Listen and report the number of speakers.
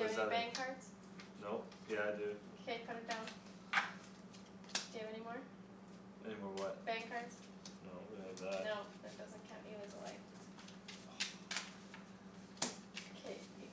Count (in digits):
2